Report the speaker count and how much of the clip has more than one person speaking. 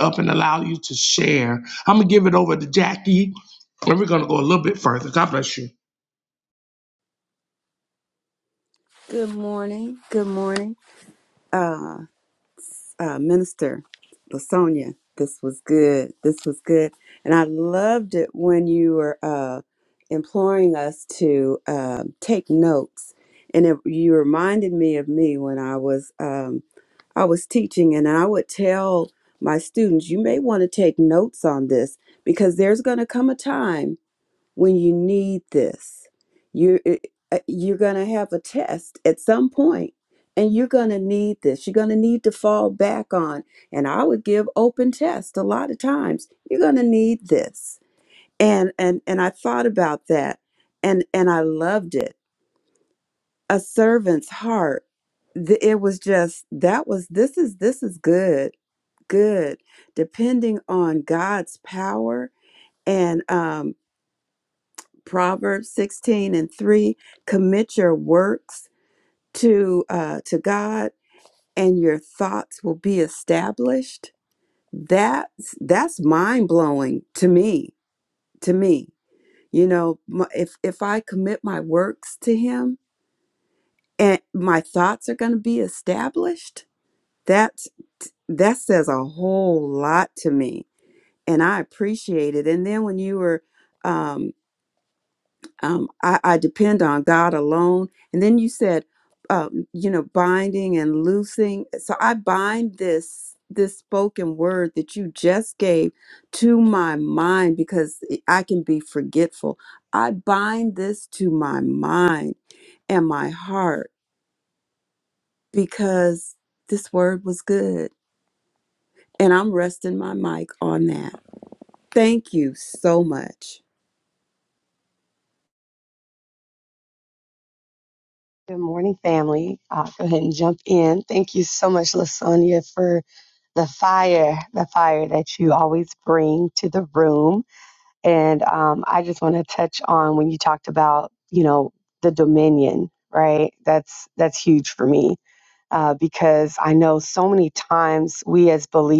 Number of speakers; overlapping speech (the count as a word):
three, no overlap